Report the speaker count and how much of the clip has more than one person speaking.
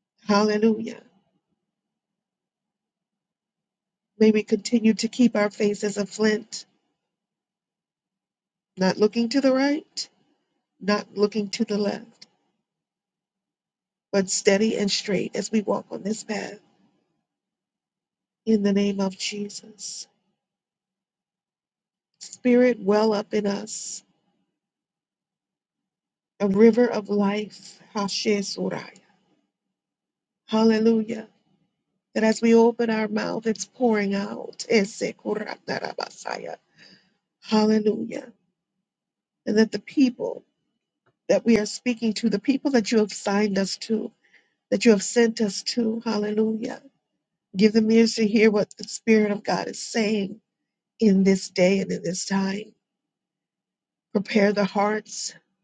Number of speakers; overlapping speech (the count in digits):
1, no overlap